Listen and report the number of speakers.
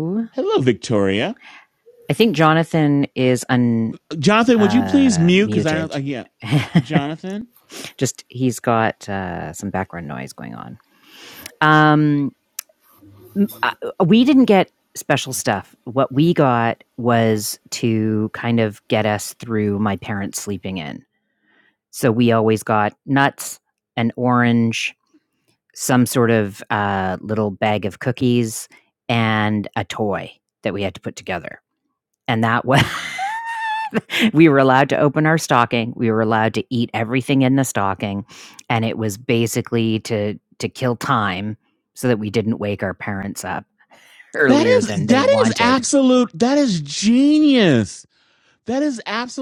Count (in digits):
2